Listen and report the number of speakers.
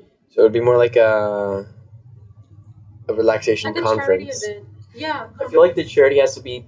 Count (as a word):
three